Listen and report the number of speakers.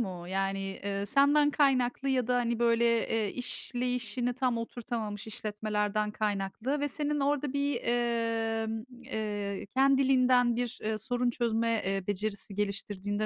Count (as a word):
one